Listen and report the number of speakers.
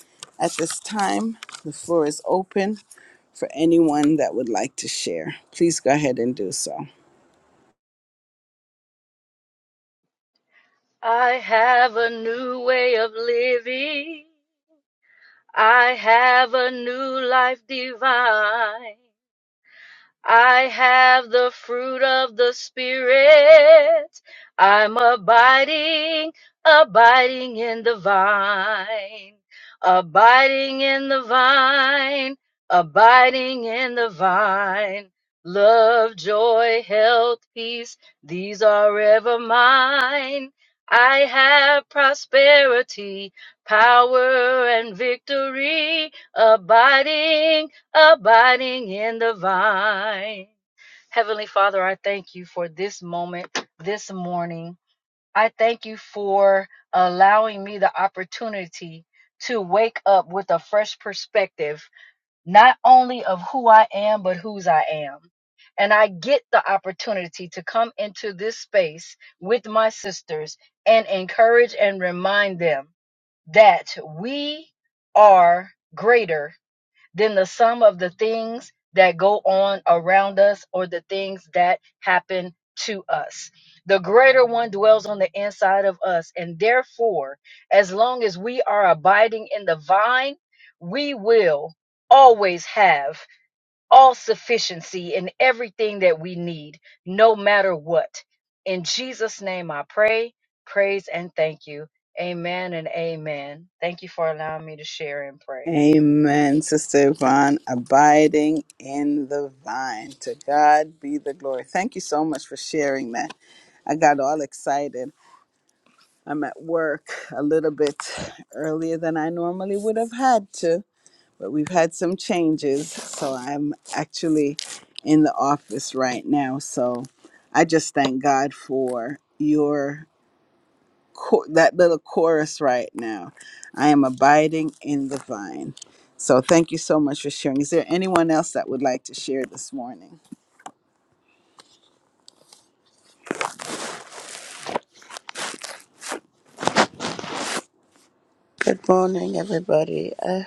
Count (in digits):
3